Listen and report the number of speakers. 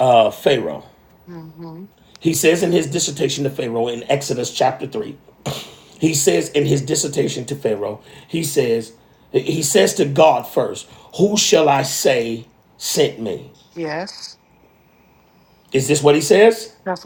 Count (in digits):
2